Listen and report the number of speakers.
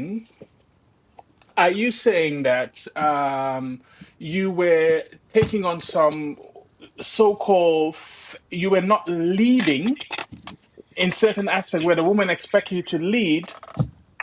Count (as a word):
one